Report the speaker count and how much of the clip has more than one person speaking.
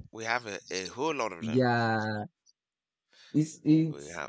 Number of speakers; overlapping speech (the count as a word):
two, about 6%